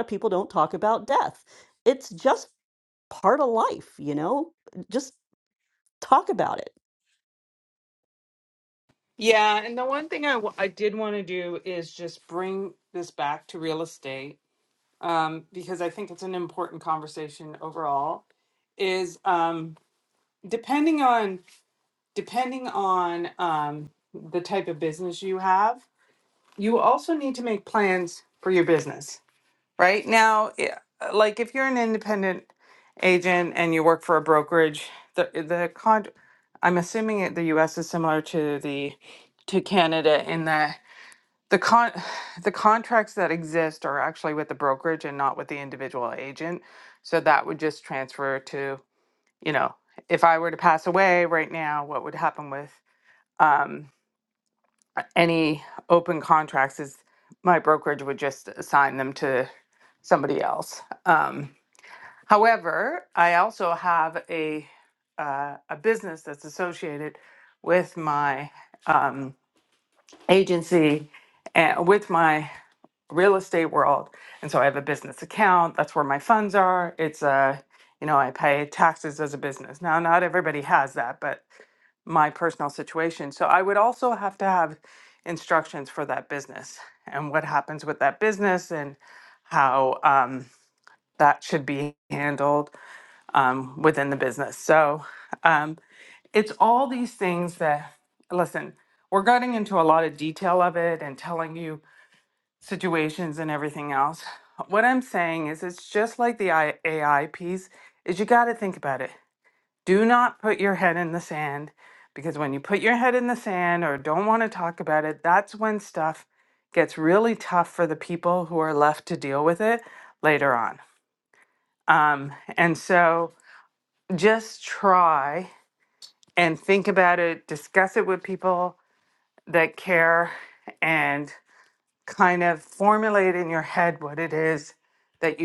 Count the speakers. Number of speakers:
2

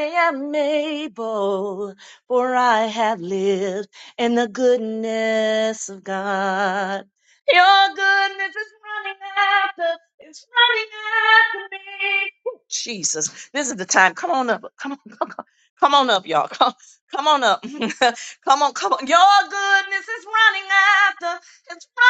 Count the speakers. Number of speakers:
1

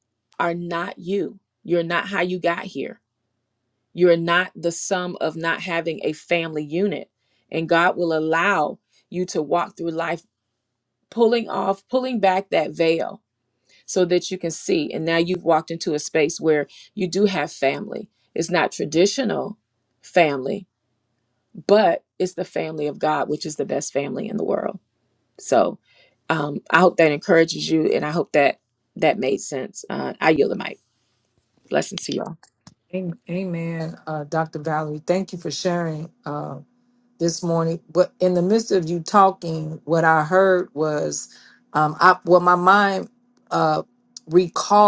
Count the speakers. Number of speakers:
2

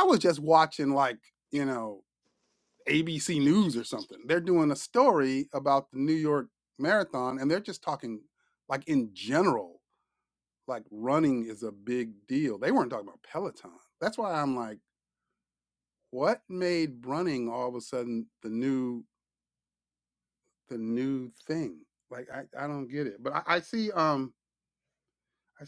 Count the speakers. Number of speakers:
1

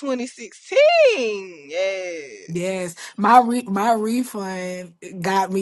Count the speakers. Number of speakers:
2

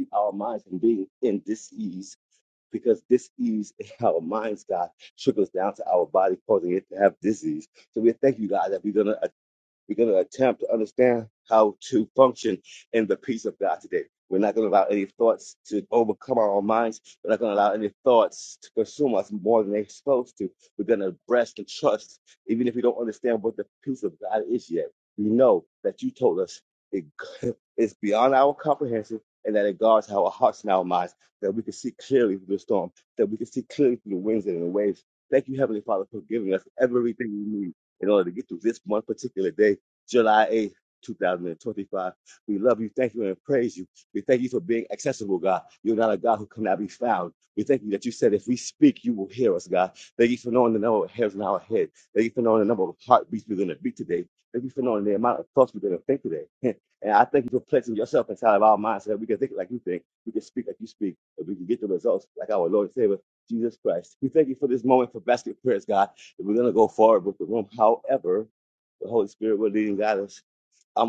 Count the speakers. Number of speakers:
1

